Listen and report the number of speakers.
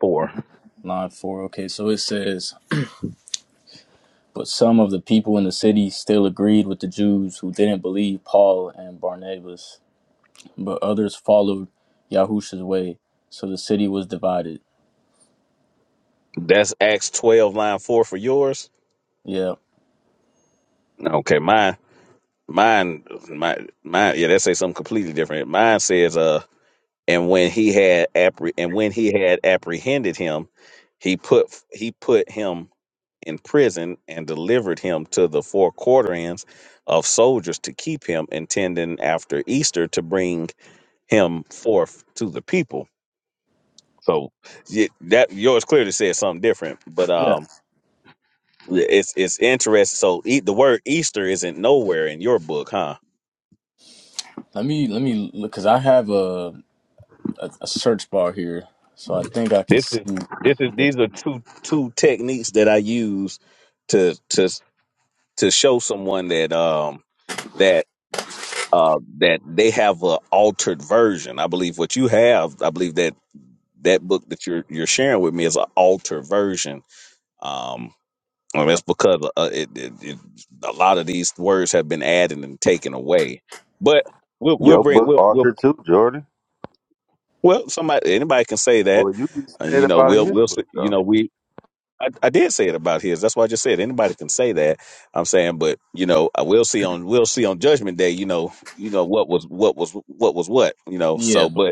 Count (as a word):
three